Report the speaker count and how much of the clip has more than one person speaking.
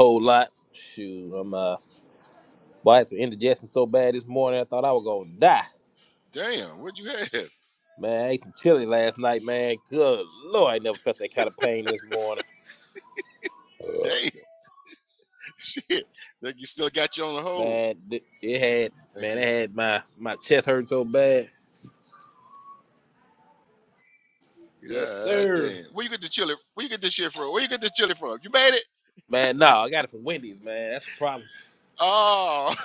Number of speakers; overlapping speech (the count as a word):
two, about 4%